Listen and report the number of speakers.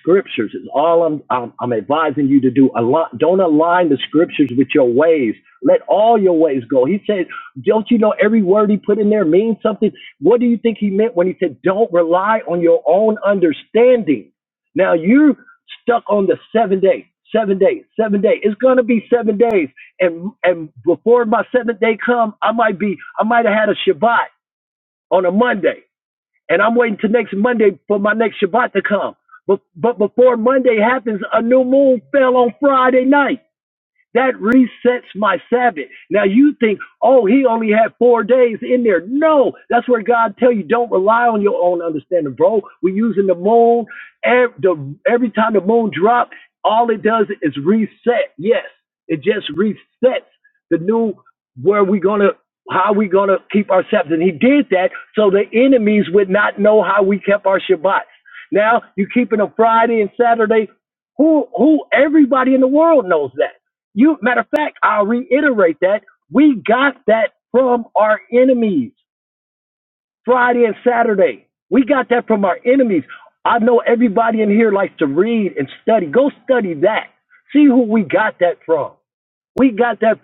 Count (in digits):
1